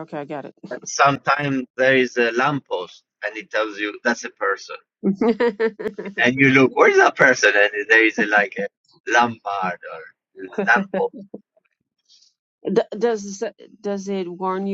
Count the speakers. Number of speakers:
2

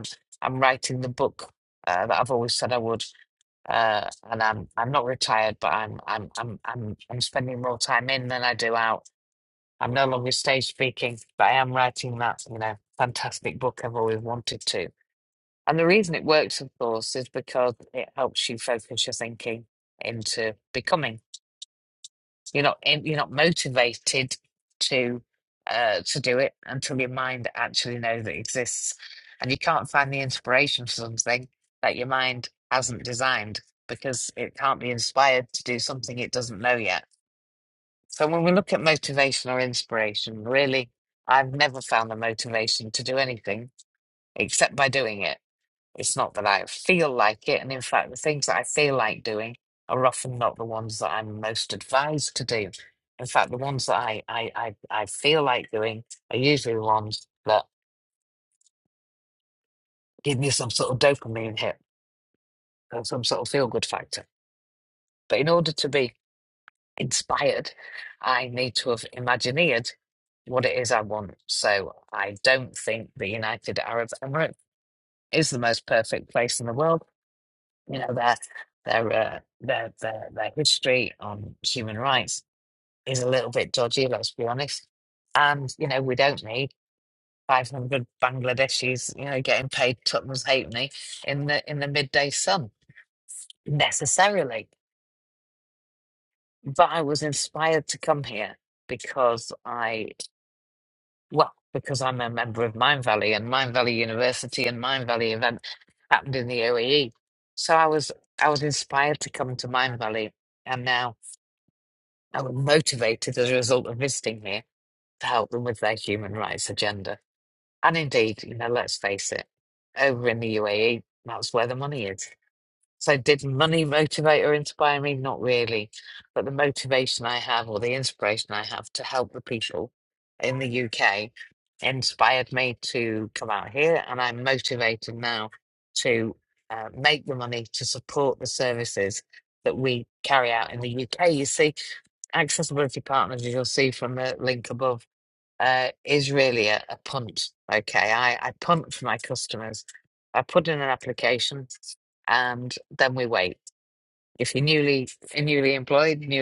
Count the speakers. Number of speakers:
1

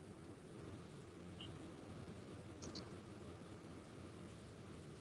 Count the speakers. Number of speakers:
0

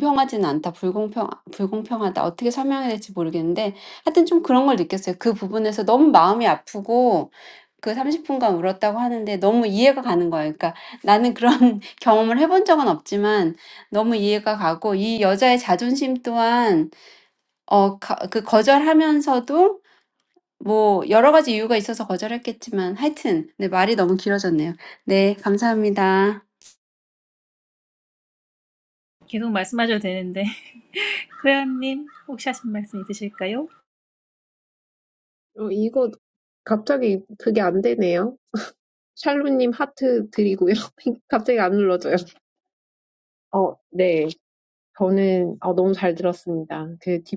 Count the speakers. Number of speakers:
3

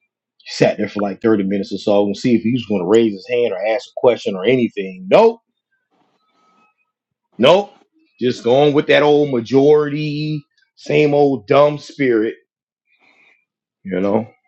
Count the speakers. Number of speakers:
1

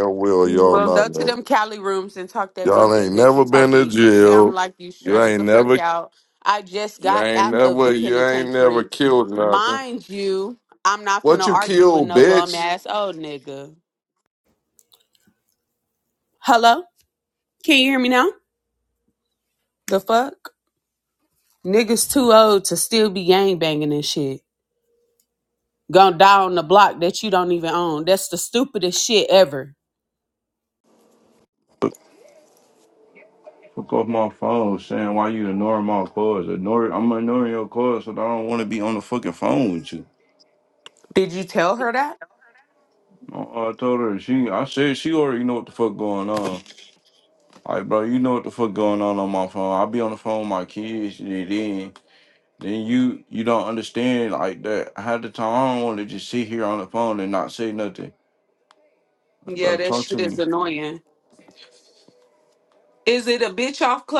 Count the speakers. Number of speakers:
3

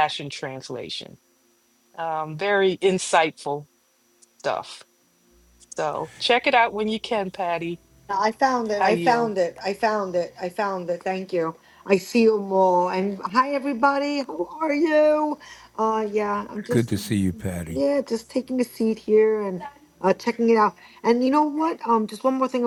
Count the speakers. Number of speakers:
3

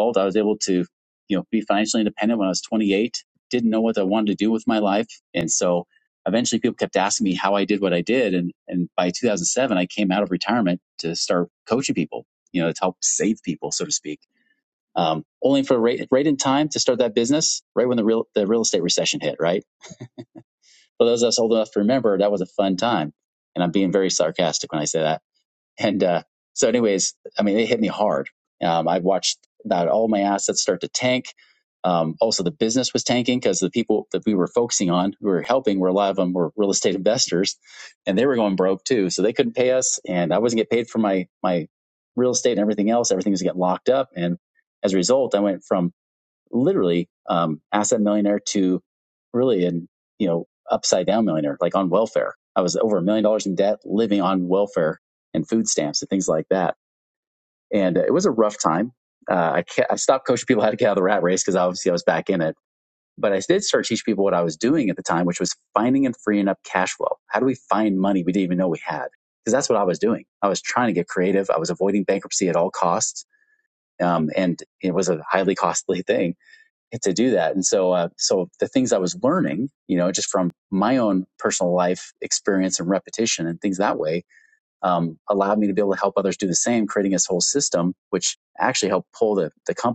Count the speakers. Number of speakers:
1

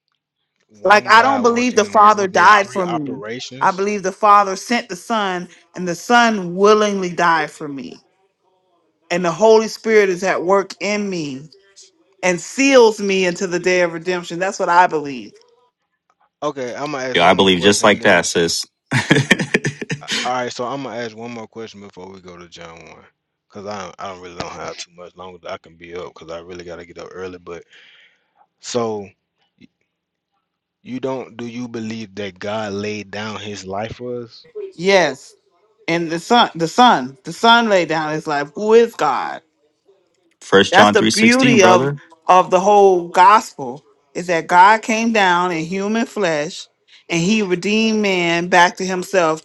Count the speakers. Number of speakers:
3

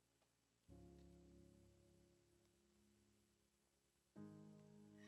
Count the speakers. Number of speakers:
0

